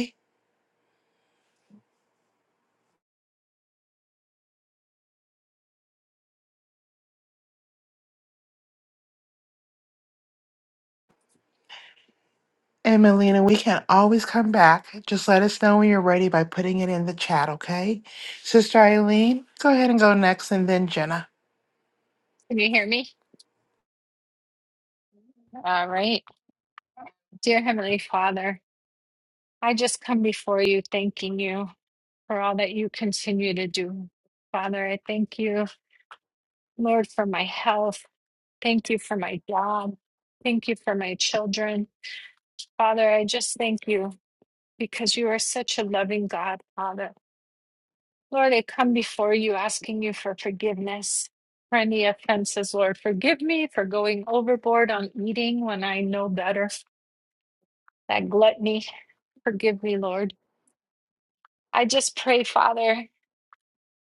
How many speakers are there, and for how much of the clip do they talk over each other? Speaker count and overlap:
2, no overlap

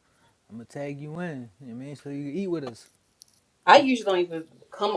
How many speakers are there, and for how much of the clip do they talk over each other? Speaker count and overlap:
2, no overlap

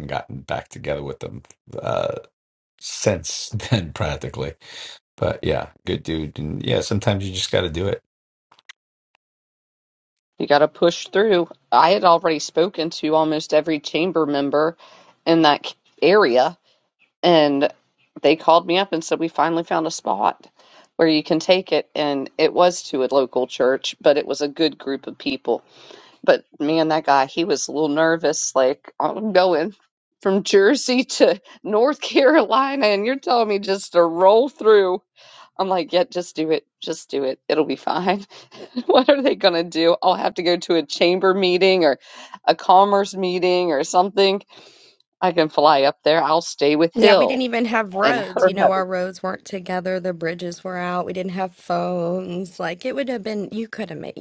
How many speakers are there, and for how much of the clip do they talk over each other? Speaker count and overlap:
3, about 2%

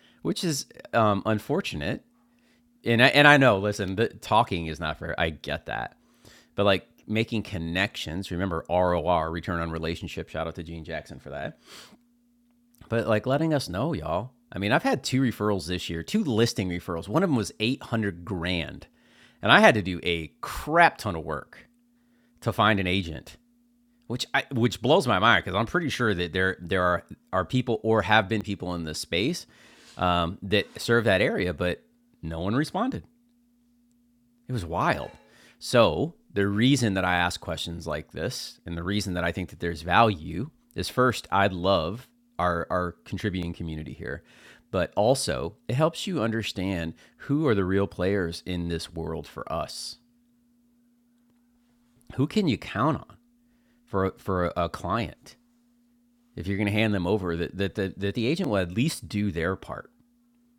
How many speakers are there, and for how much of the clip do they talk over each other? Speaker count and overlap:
1, no overlap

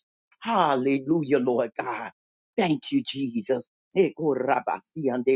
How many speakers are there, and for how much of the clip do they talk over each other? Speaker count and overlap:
1, no overlap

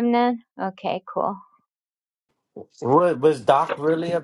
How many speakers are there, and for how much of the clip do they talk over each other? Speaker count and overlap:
2, no overlap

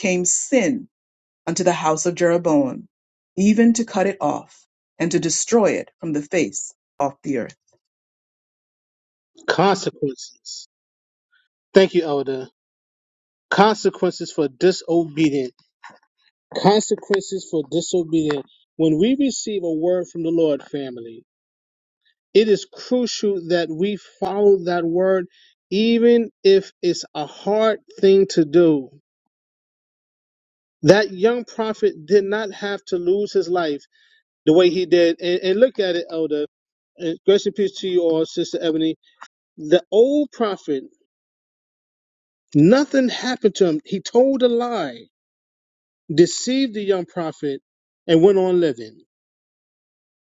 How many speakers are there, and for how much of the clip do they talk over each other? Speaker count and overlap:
2, no overlap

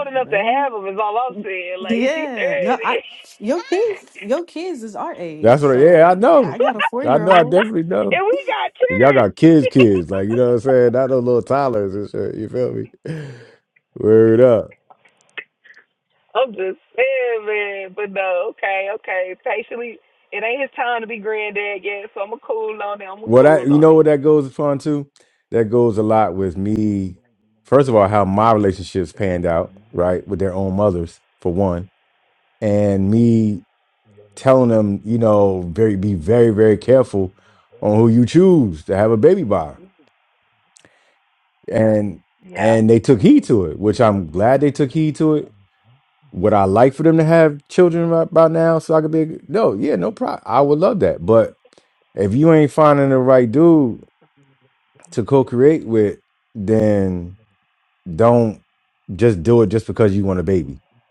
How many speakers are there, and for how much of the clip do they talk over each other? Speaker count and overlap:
3, about 9%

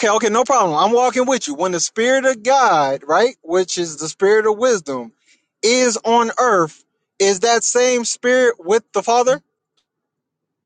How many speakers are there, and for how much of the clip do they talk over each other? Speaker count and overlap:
1, no overlap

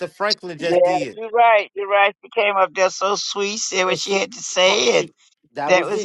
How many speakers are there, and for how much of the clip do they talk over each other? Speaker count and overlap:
2, about 27%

